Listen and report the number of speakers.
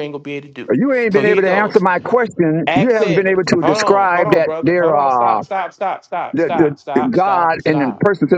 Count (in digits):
2